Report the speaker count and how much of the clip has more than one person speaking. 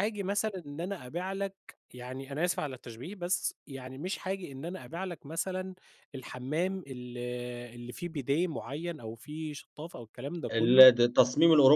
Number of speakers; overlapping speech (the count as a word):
two, about 3%